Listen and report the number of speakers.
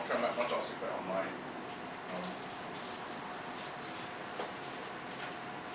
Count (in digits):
1